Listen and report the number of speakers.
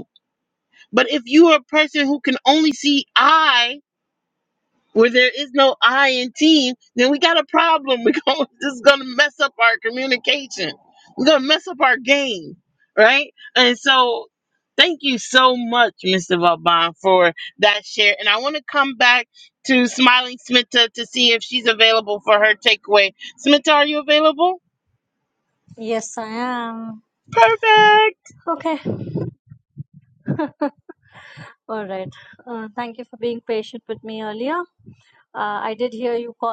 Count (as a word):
two